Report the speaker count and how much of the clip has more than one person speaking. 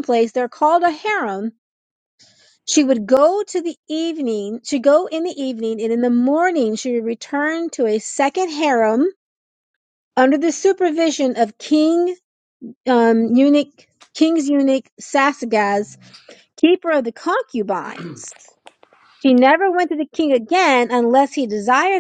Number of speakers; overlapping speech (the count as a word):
one, no overlap